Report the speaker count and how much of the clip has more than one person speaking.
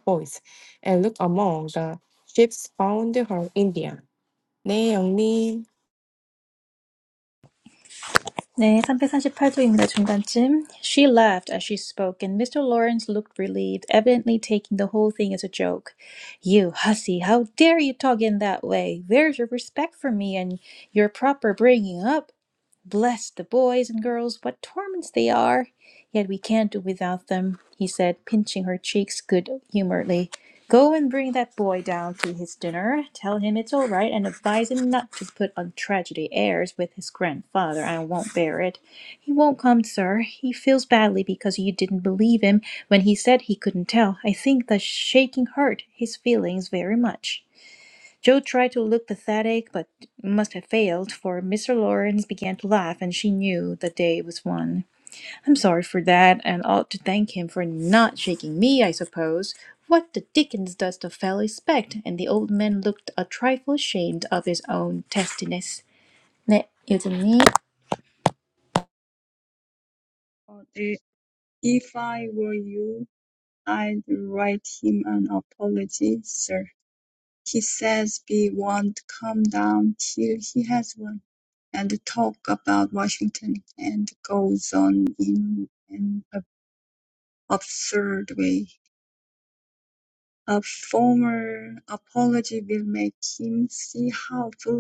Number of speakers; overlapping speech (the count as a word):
three, no overlap